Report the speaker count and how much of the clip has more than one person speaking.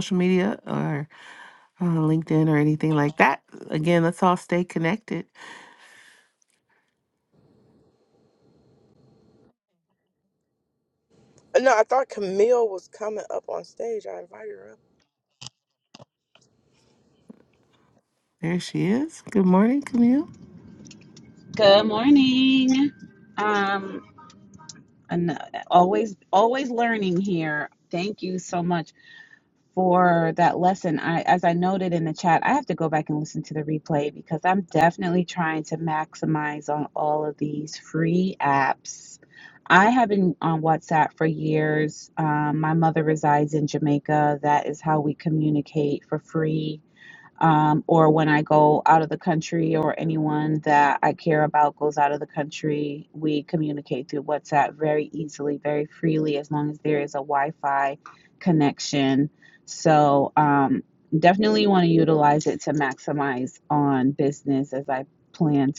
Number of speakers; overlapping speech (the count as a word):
three, no overlap